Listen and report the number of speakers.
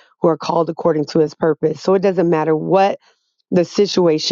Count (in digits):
1